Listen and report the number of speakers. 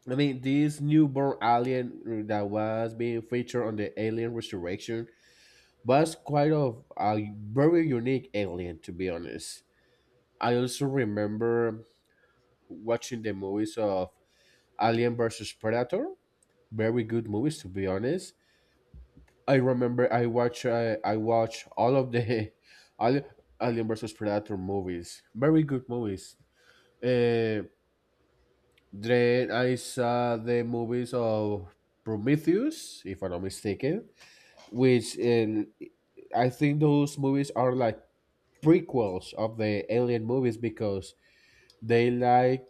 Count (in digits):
1